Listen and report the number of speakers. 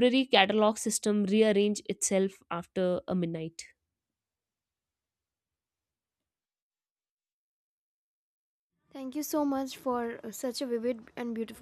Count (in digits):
2